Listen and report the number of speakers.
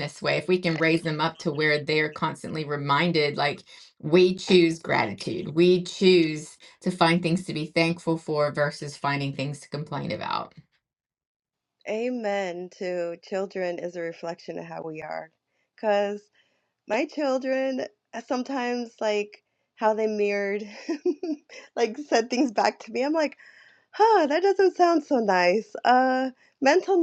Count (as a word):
two